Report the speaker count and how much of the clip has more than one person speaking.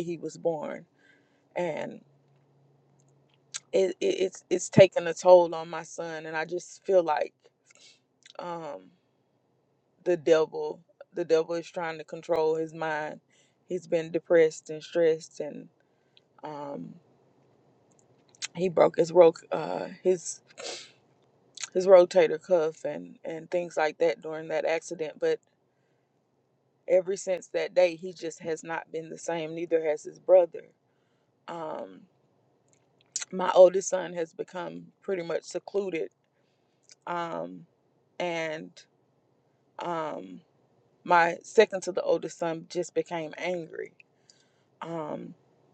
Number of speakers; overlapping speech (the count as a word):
one, no overlap